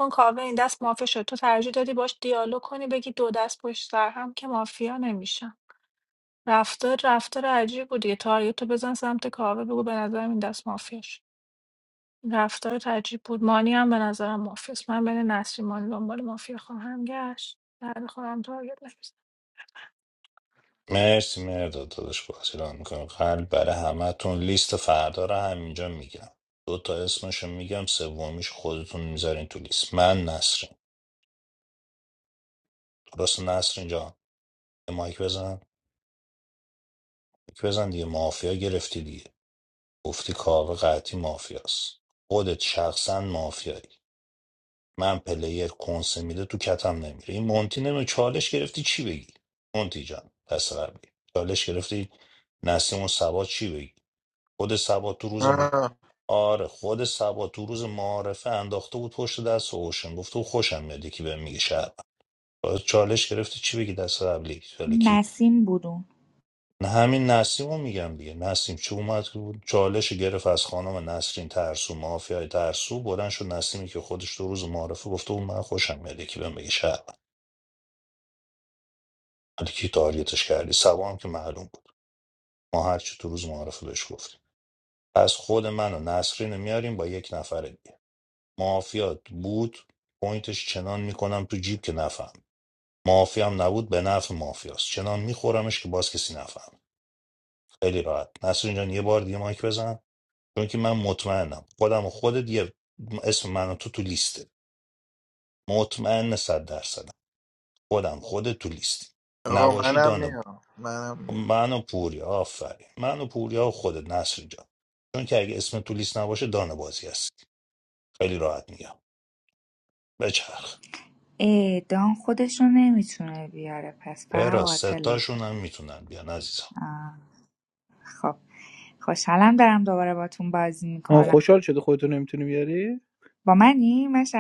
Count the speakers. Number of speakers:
5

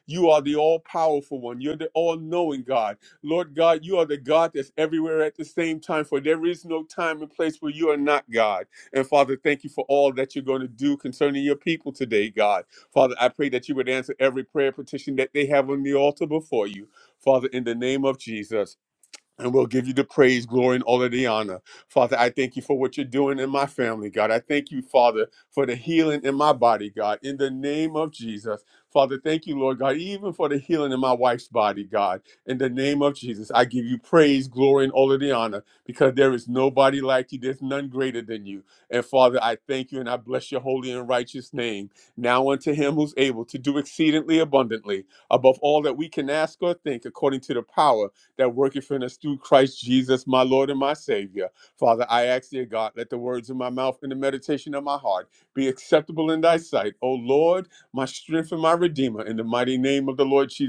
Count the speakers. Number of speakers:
1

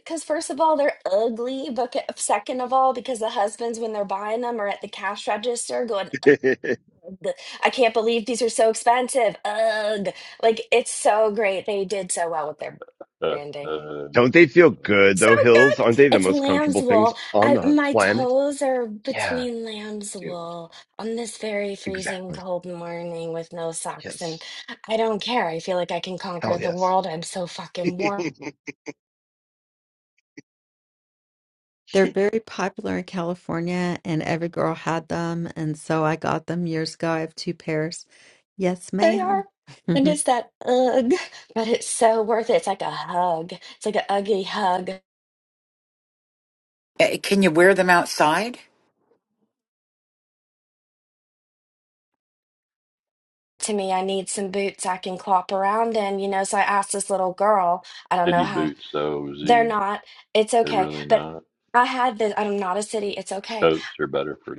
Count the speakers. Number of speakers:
5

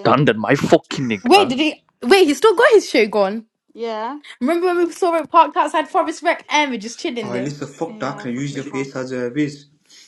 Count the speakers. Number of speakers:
4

